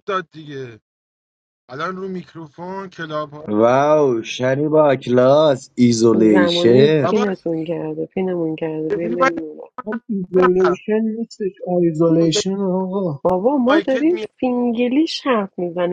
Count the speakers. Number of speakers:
four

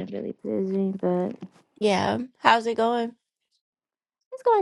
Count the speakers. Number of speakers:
two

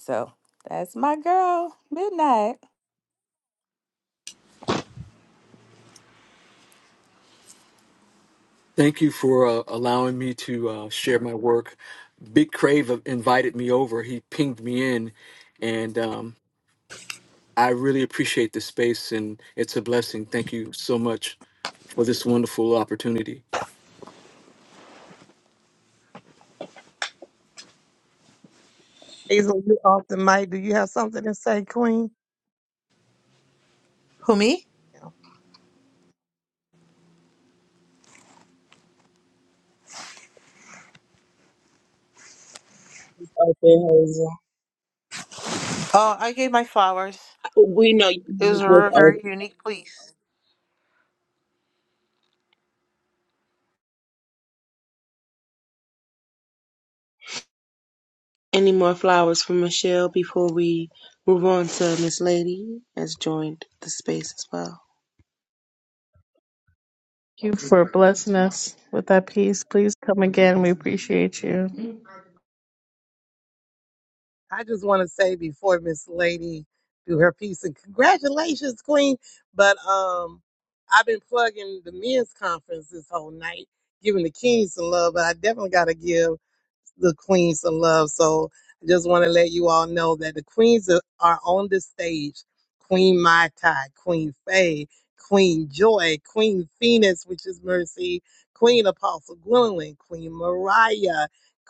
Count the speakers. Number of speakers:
six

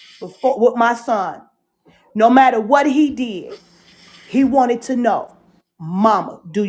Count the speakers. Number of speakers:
one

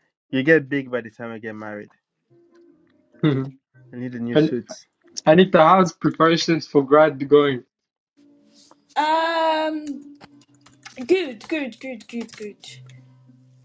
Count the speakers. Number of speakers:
three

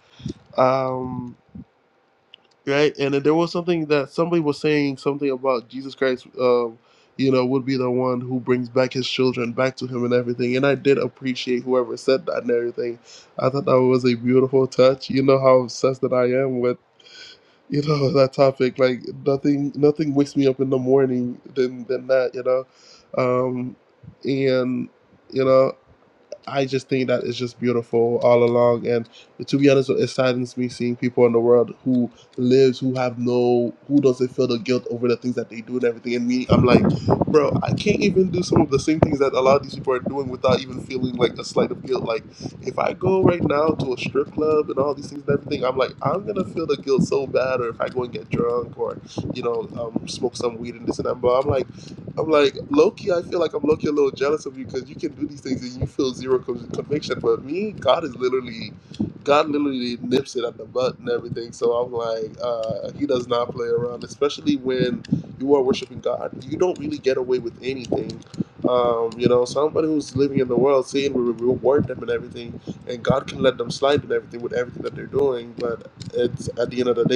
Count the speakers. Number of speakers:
one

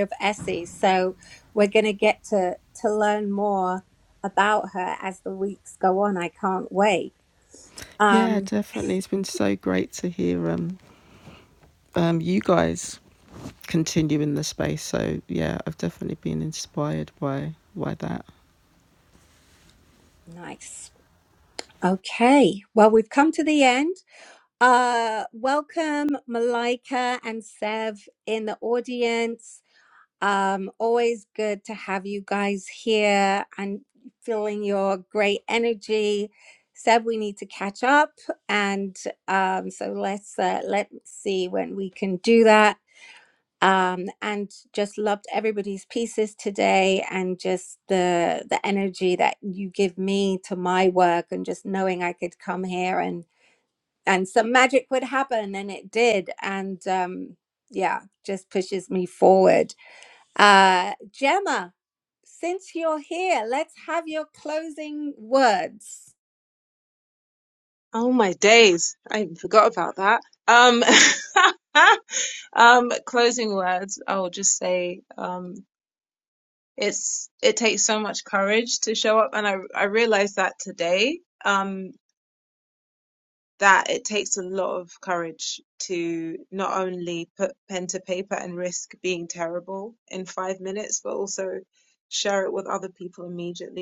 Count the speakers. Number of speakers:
three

